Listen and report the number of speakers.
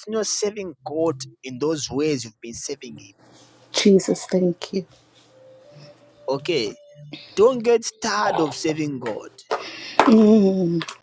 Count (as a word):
two